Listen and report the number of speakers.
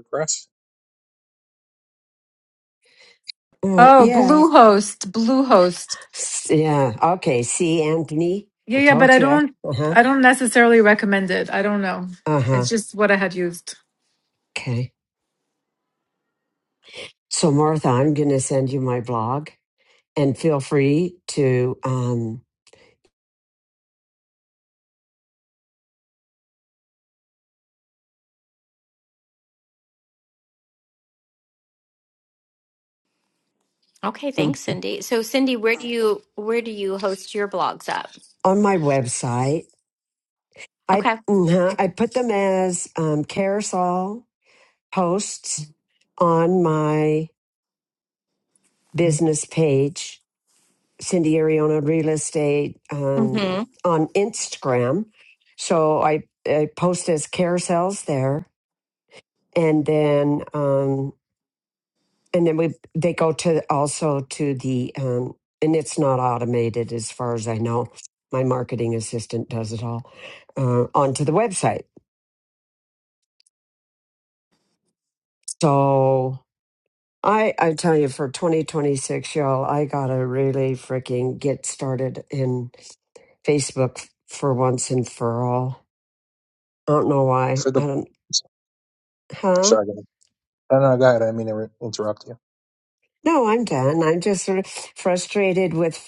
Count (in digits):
4